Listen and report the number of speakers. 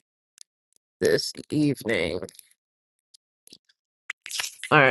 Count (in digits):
1